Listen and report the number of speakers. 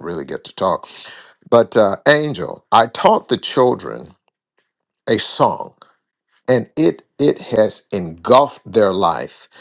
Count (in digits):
1